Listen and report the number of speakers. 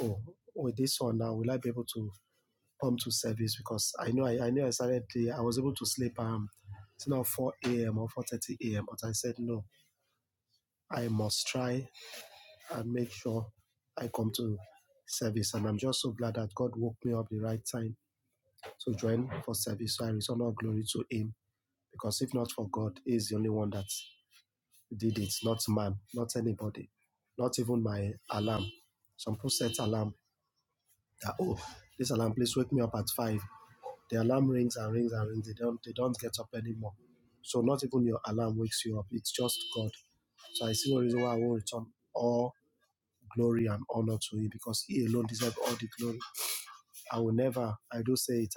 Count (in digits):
1